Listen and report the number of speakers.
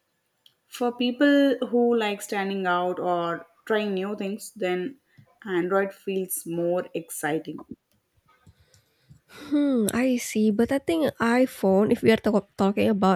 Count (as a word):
two